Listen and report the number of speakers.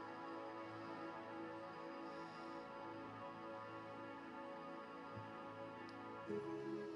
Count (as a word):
zero